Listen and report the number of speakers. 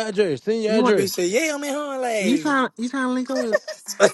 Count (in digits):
3